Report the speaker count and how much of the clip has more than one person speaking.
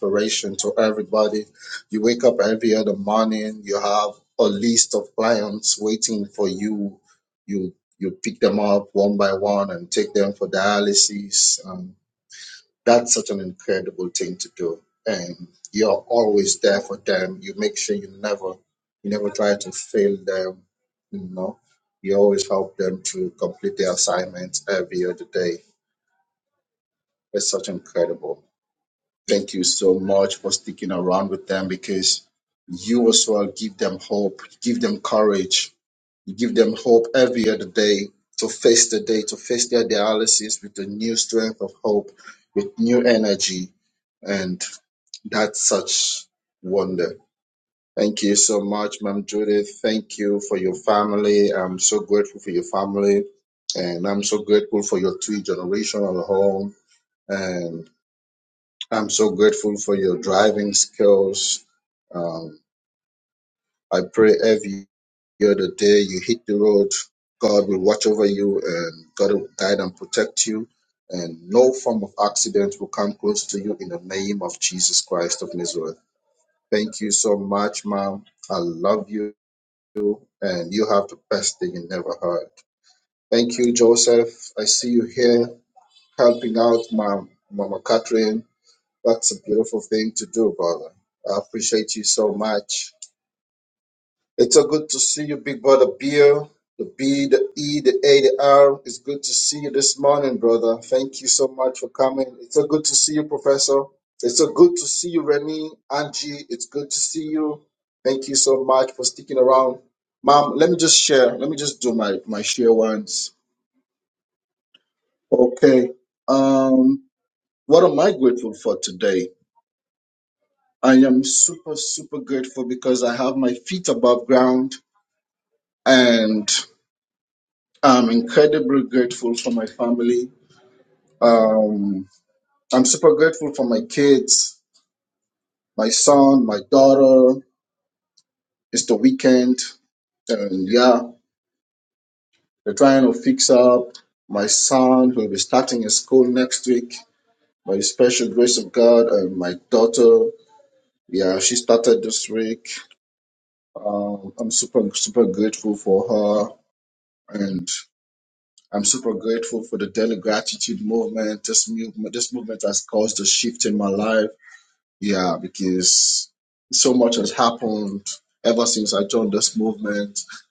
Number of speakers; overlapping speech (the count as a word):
one, no overlap